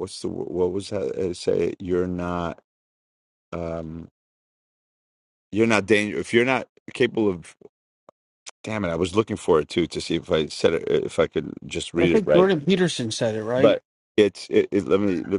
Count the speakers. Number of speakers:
two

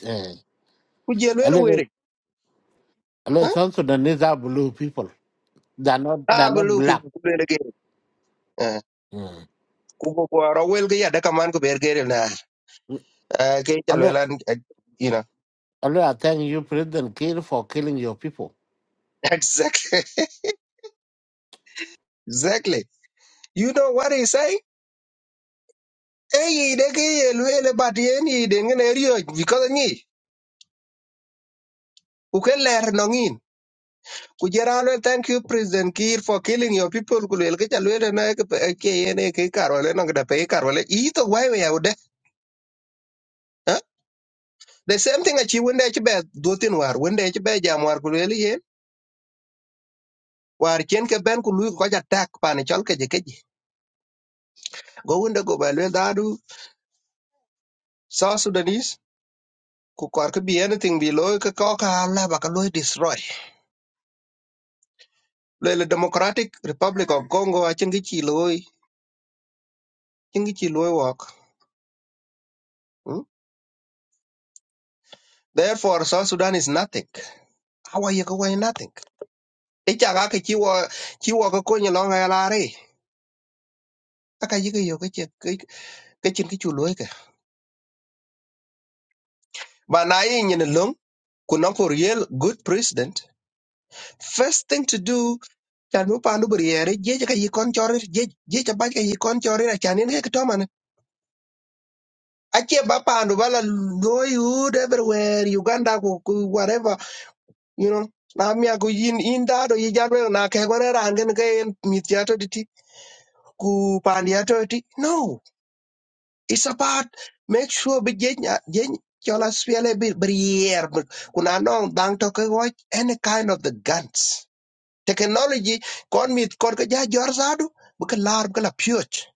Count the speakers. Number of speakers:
two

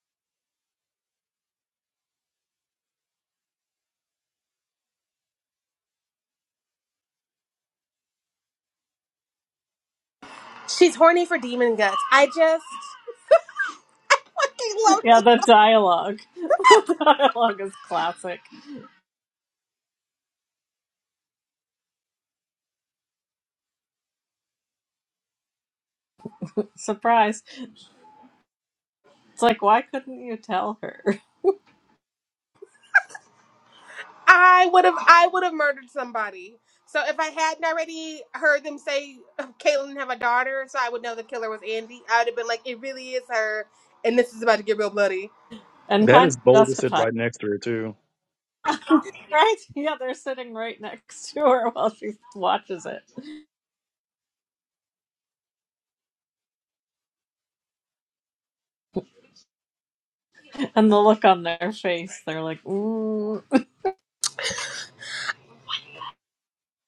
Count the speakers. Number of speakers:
three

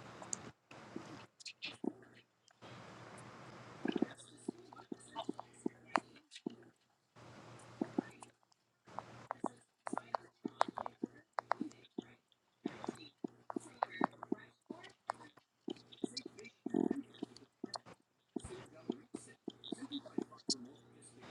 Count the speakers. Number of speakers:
zero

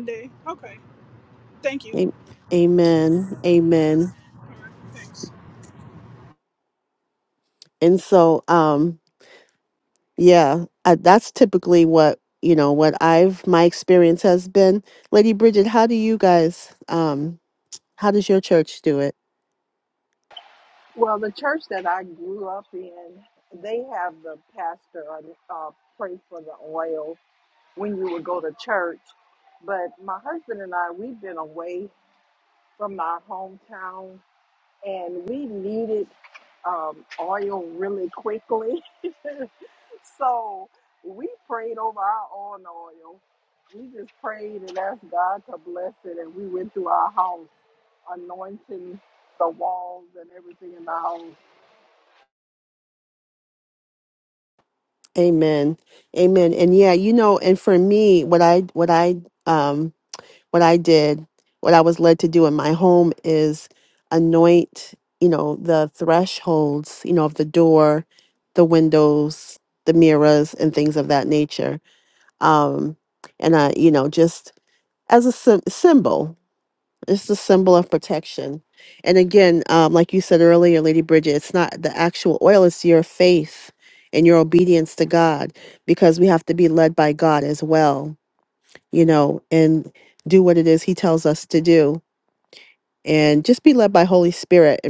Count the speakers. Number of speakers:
three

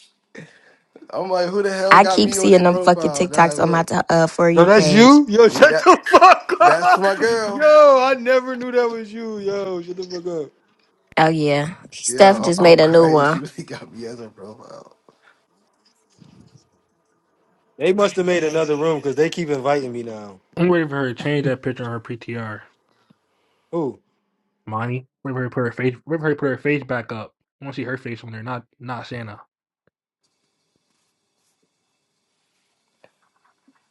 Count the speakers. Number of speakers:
four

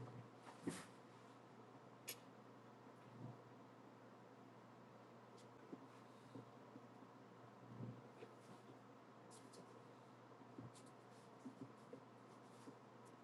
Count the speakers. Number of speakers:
zero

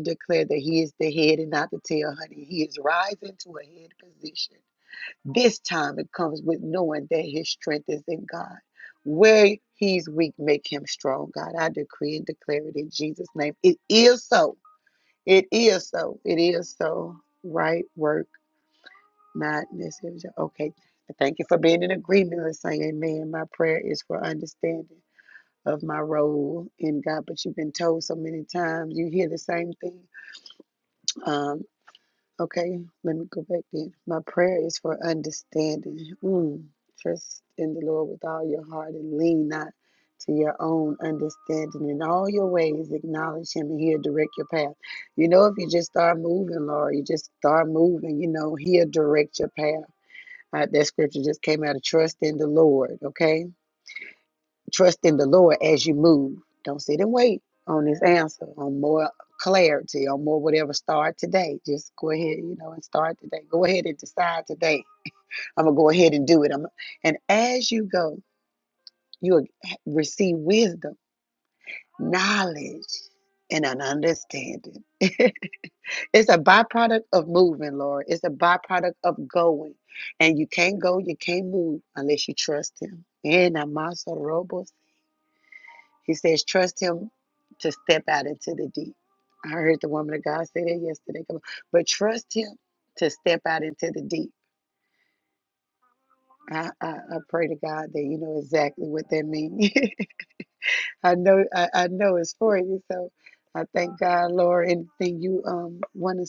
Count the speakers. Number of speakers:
one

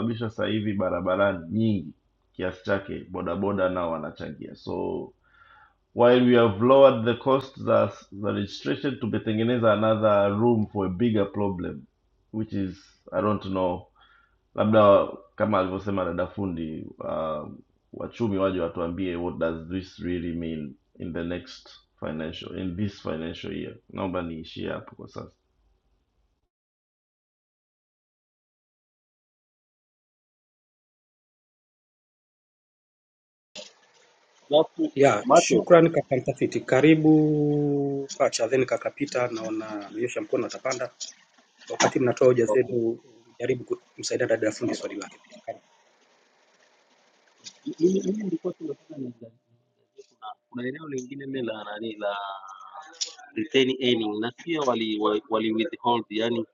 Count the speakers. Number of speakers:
three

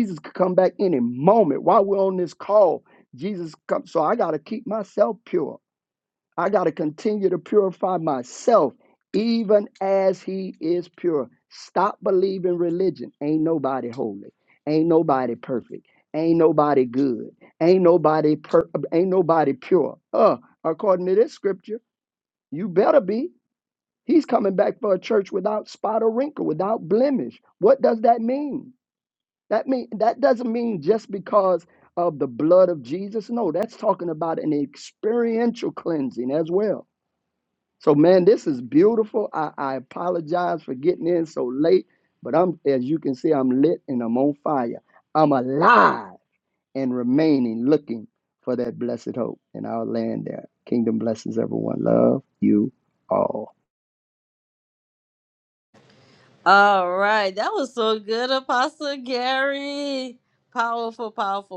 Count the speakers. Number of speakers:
two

